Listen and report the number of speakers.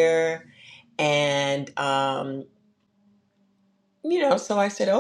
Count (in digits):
1